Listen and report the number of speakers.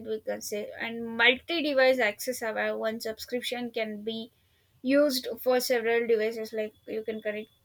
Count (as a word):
one